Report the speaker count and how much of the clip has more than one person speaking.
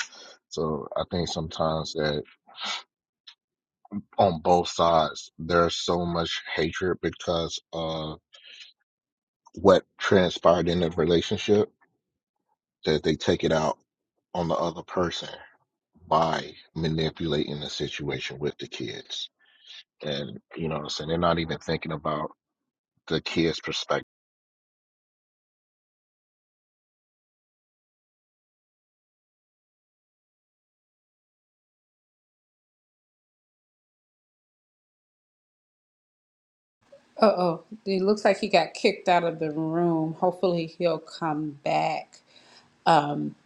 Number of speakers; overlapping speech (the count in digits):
2, no overlap